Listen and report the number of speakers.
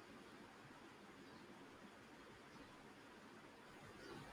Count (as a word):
zero